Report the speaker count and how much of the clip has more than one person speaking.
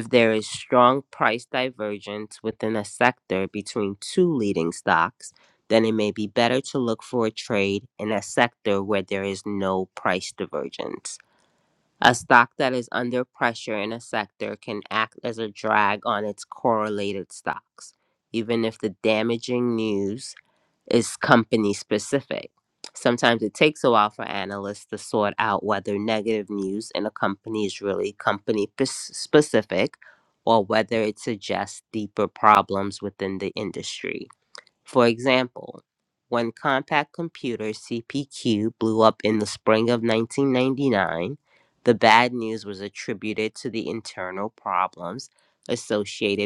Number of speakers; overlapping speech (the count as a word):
one, no overlap